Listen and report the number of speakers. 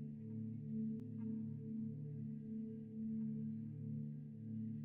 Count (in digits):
0